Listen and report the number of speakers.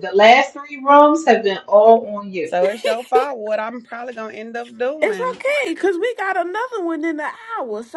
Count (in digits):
3